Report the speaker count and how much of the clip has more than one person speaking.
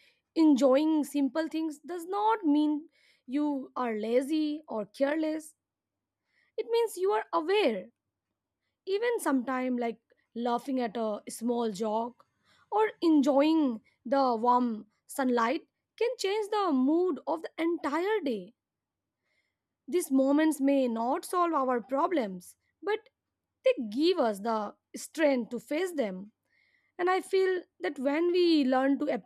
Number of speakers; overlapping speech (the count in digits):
1, no overlap